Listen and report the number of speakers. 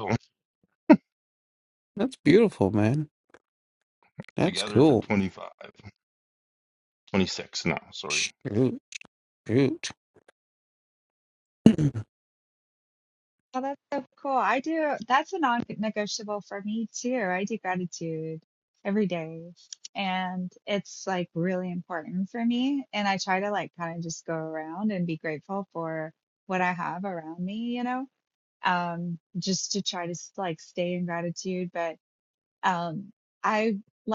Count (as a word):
three